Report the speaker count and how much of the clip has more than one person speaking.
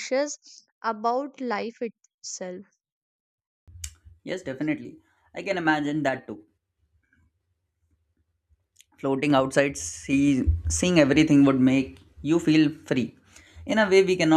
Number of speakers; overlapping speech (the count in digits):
2, no overlap